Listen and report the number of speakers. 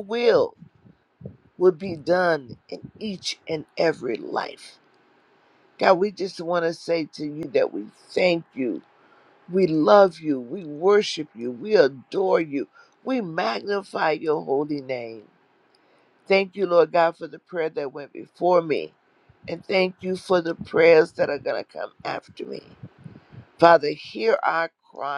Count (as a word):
one